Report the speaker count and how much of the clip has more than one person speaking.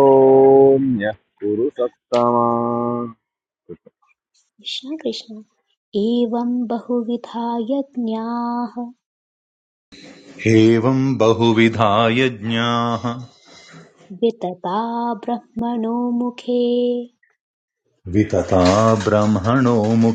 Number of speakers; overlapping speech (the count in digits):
3, no overlap